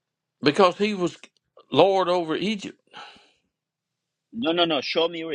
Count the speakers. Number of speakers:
two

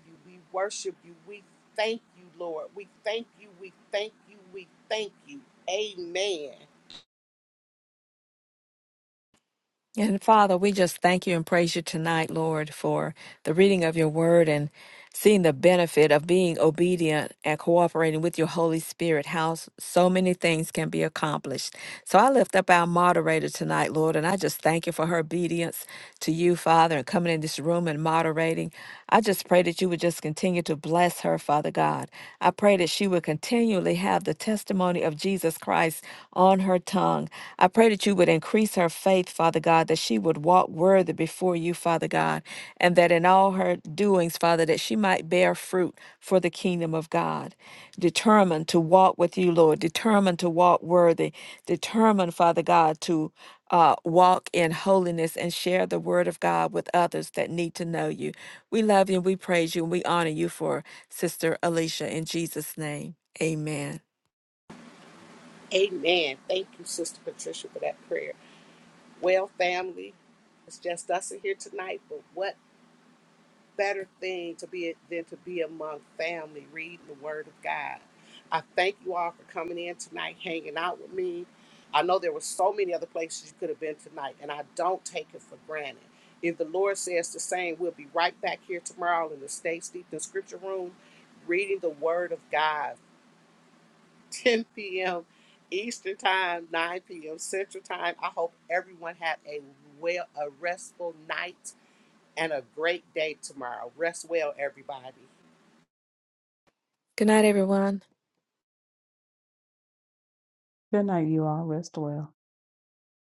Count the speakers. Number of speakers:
three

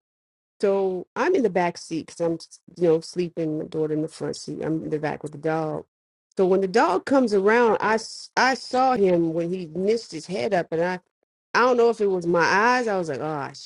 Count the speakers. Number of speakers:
one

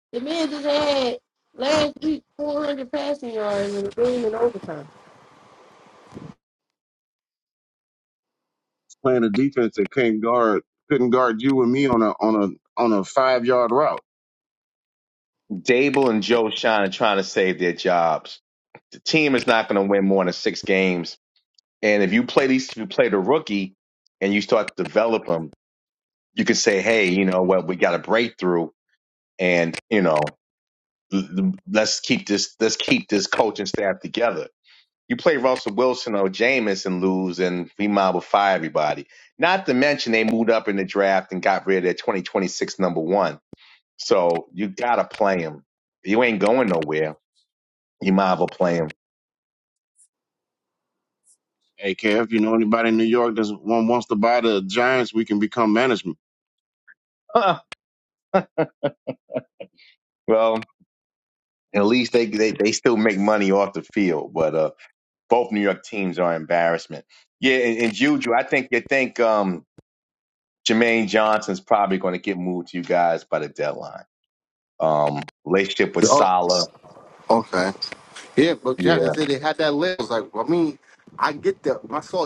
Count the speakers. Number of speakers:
four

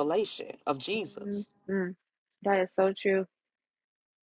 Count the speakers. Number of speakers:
two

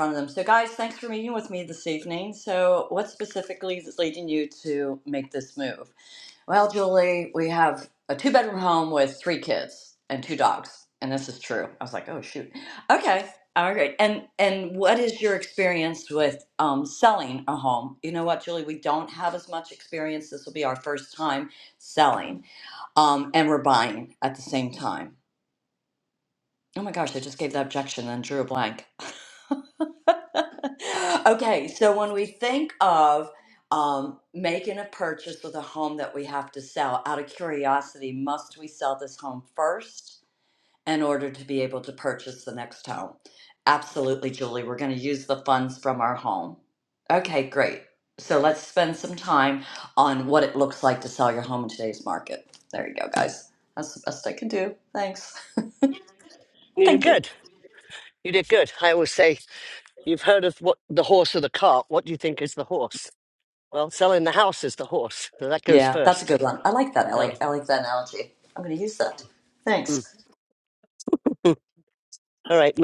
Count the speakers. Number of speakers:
two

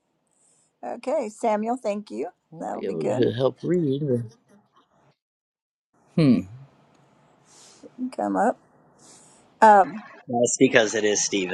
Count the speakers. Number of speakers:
three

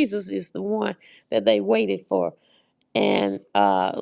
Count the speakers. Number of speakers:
one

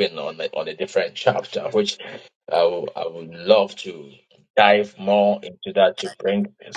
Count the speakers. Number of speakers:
one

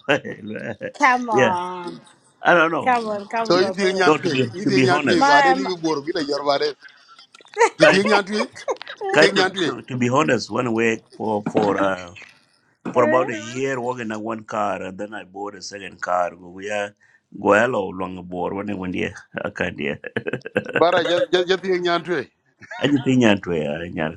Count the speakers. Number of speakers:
three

